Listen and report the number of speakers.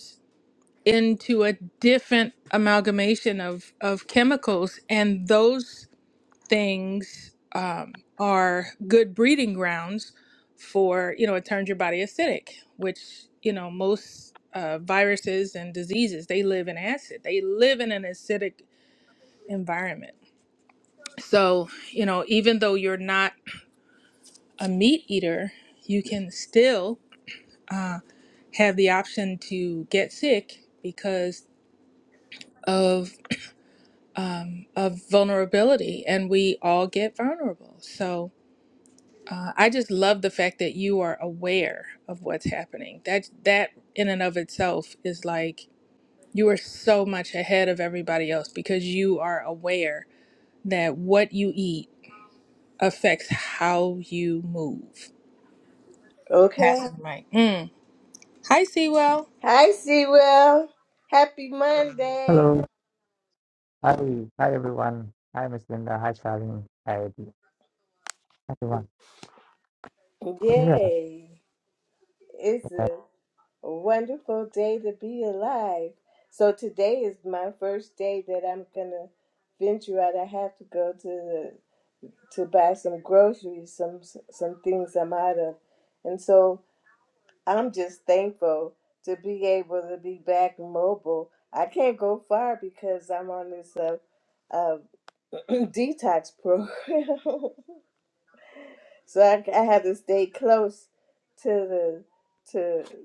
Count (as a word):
three